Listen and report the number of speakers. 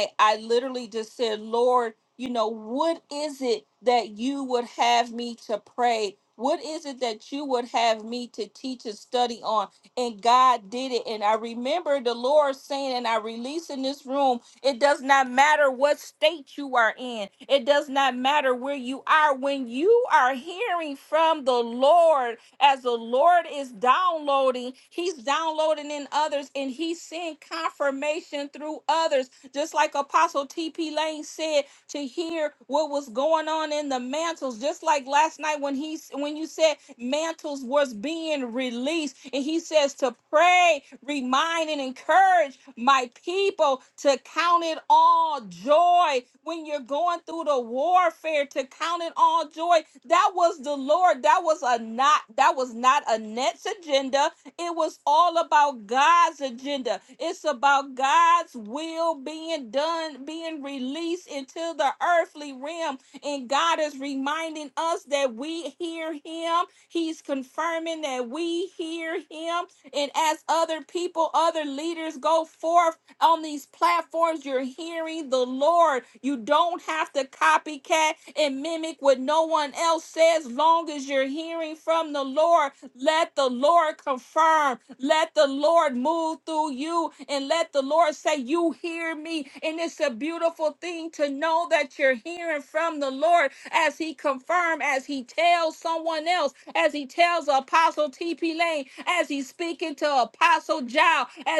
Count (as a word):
one